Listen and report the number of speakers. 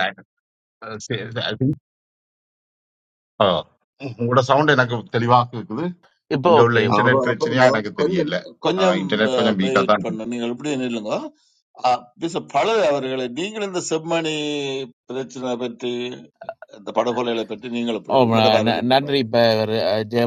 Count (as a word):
three